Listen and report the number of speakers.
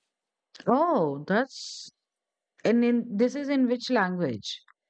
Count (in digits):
1